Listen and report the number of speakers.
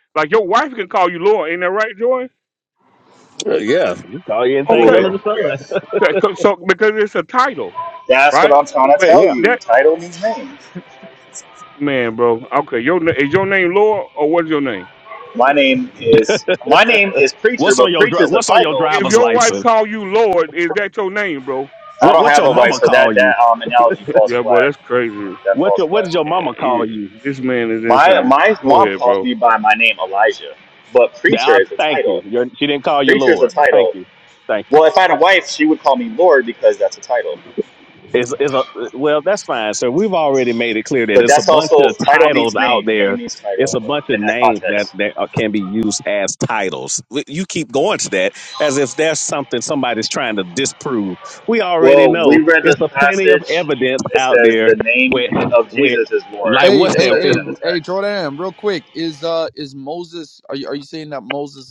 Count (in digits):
4